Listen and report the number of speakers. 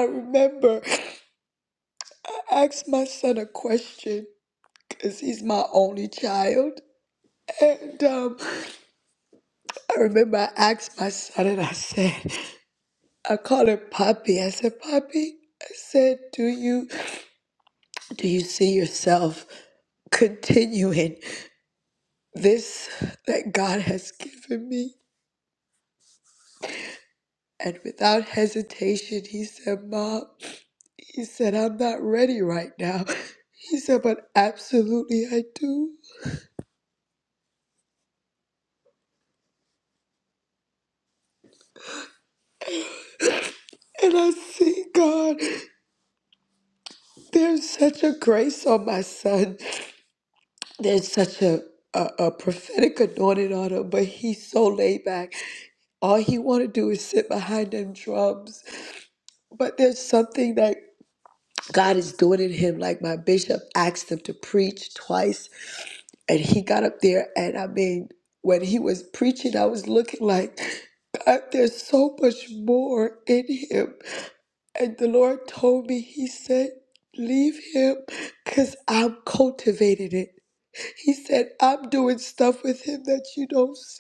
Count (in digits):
1